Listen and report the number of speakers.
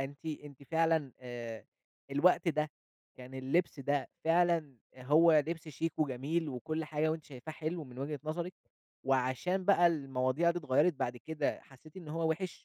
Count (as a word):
one